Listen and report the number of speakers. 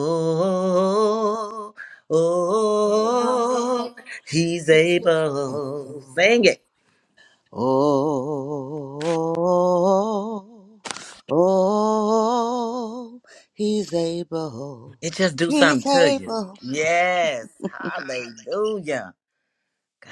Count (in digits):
2